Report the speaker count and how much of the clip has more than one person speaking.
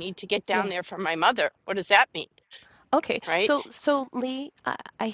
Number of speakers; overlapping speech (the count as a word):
two, about 9%